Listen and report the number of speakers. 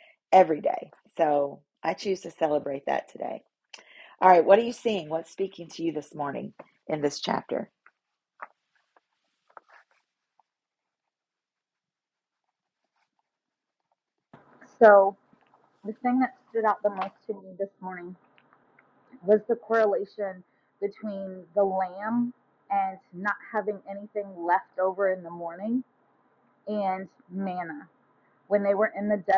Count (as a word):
two